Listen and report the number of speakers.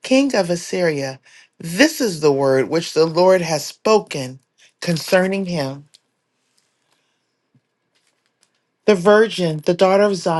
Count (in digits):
1